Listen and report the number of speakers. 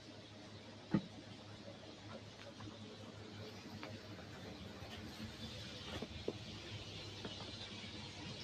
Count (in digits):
0